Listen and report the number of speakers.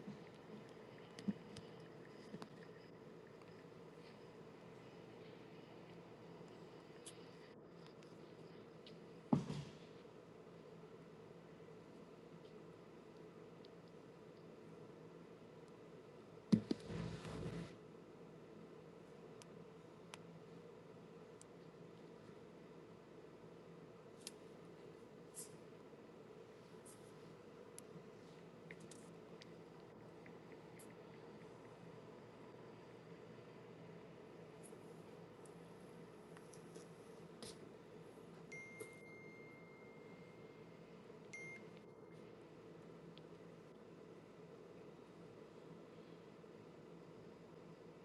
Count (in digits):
0